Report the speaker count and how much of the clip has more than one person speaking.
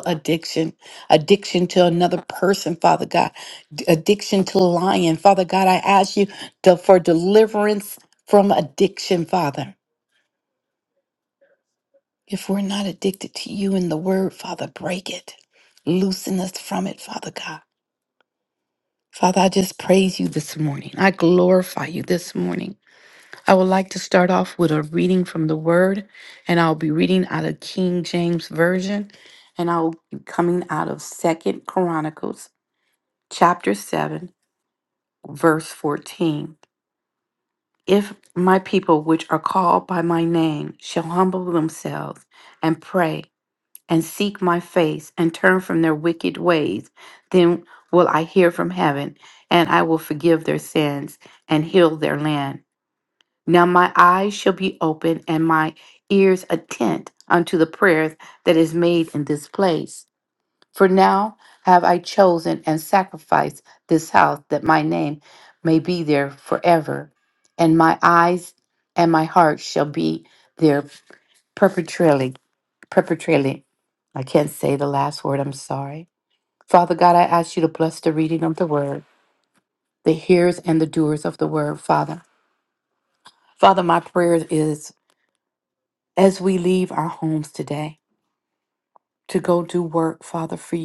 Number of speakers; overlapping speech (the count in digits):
1, no overlap